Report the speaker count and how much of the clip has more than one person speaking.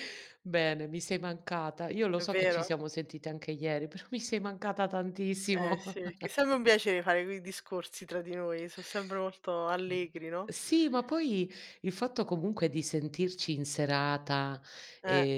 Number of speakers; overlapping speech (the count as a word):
two, about 7%